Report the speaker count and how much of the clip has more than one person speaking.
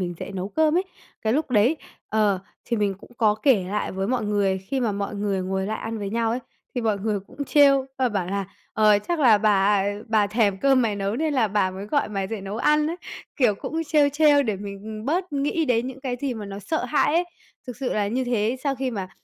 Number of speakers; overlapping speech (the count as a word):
one, no overlap